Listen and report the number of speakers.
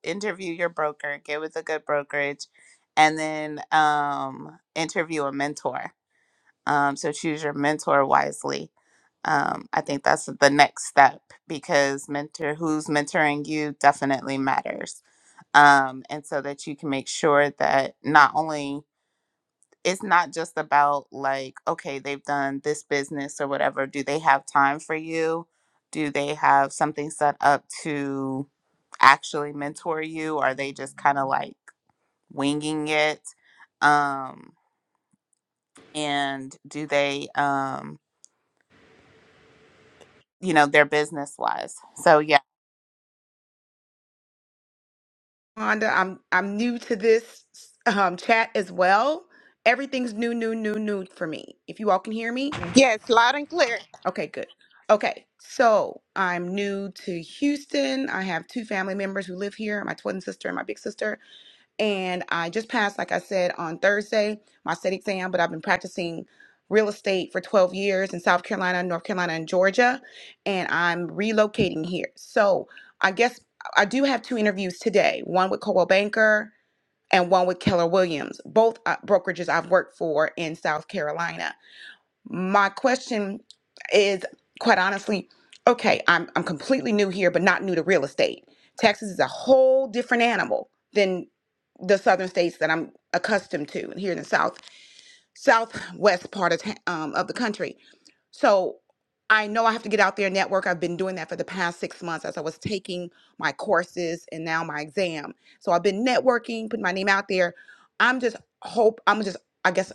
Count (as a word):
three